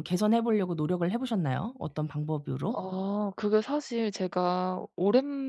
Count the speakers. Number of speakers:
2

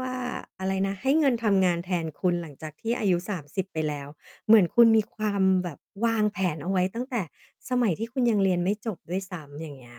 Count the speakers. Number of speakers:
1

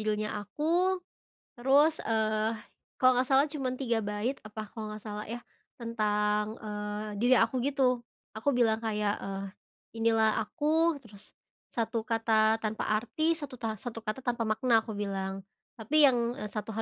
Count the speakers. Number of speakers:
1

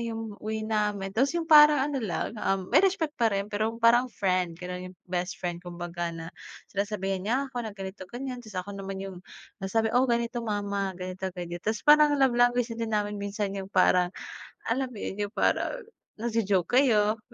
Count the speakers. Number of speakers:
1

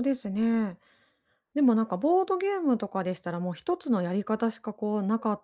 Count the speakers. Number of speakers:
1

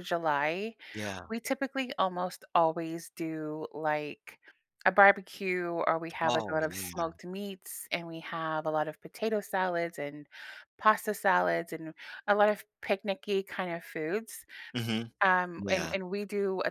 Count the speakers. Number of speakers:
2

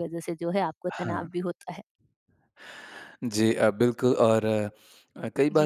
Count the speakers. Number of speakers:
2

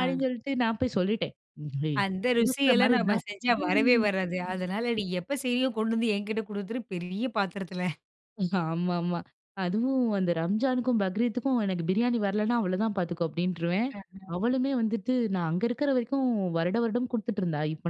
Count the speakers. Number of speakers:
2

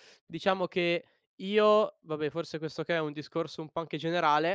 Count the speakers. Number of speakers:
1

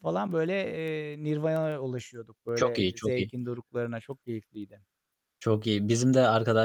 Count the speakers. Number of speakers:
2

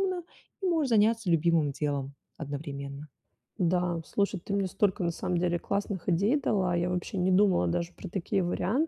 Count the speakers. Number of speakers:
2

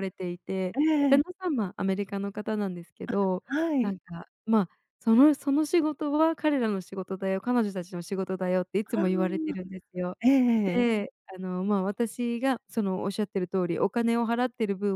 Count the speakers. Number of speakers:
2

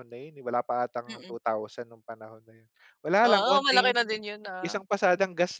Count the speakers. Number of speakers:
2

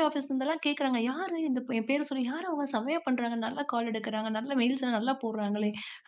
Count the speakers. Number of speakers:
1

